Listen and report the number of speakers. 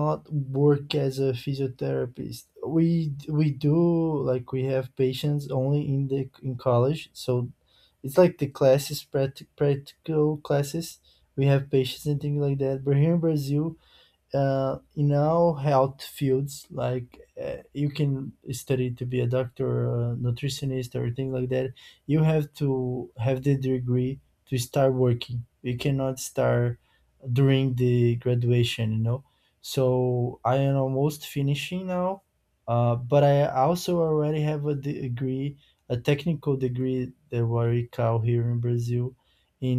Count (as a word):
one